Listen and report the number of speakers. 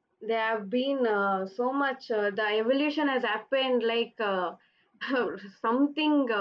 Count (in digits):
1